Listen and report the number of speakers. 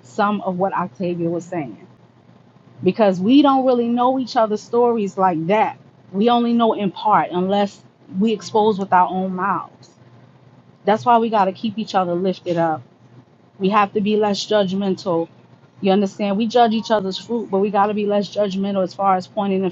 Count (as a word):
one